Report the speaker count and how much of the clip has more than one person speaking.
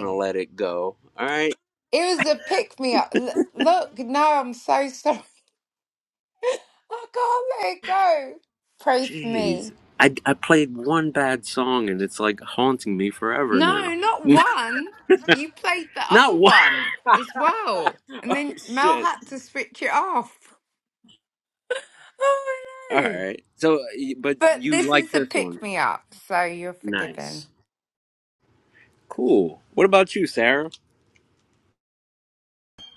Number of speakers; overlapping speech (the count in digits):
2, about 13%